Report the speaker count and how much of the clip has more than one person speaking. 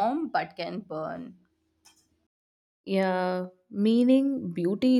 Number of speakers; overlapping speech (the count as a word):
two, no overlap